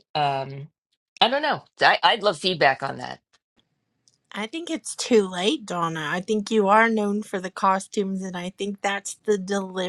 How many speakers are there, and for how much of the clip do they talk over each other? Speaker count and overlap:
2, no overlap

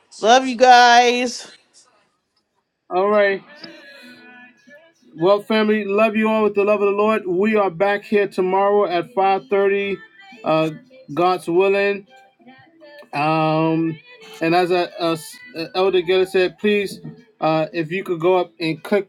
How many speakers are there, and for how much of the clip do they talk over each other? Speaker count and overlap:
2, no overlap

